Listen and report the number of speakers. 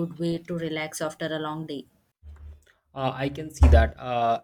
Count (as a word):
two